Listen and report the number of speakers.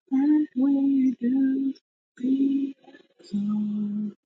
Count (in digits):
1